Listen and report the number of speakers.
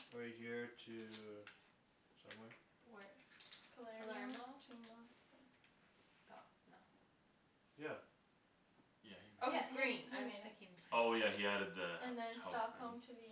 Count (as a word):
four